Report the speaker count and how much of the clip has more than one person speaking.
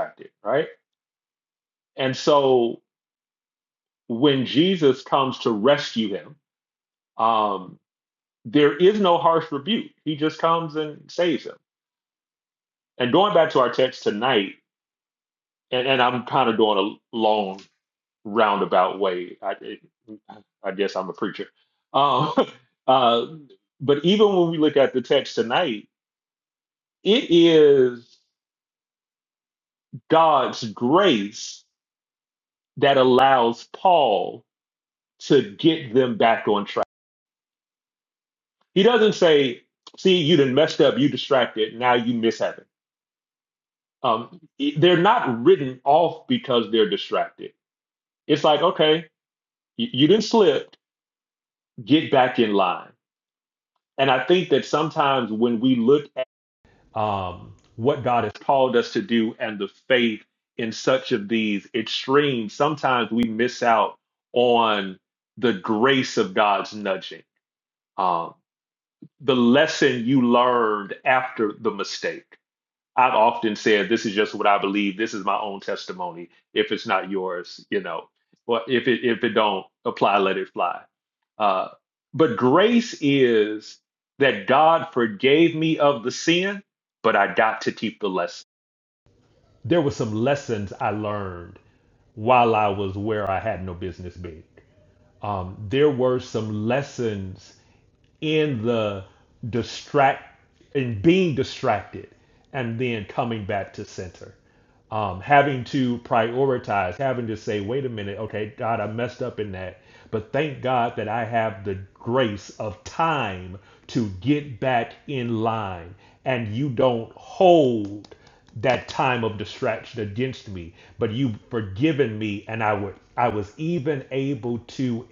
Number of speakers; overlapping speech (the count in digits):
1, no overlap